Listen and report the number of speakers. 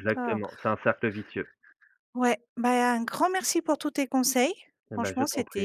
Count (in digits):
2